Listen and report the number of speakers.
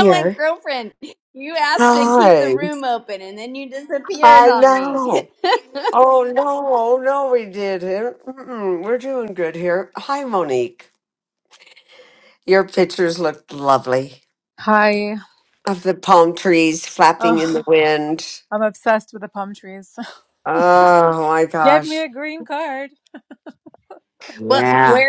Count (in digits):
3